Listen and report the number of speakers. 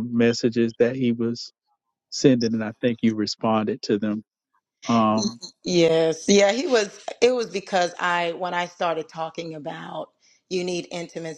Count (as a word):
two